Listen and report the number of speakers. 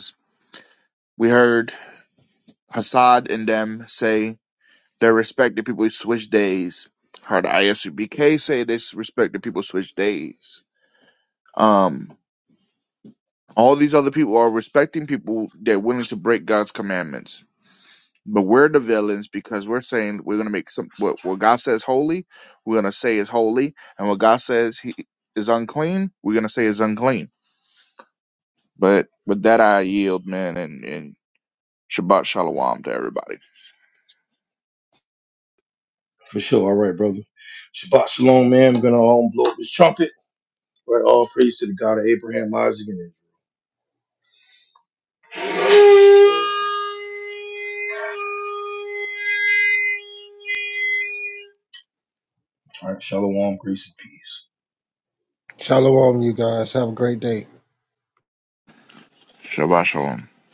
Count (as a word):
three